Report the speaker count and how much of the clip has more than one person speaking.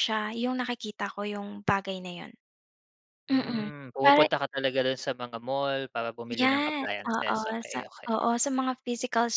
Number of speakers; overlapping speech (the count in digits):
2, about 26%